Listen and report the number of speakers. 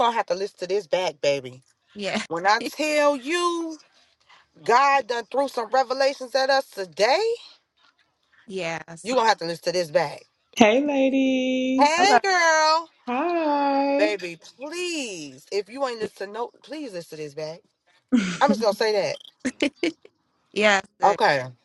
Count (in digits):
3